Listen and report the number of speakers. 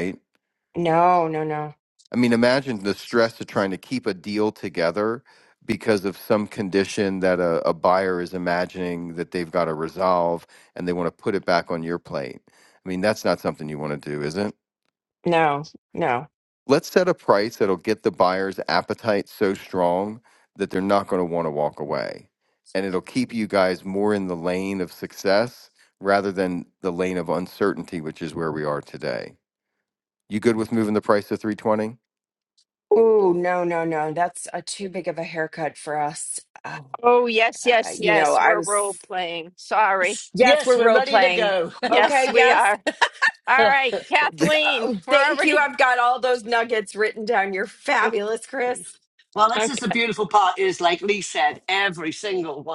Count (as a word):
four